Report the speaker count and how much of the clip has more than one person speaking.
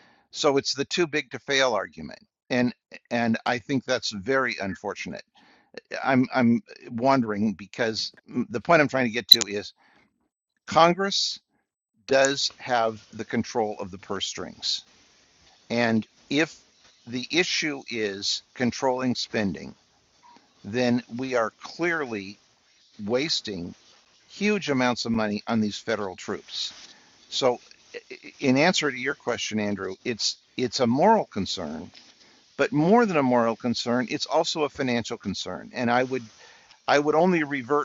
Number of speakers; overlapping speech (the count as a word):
one, no overlap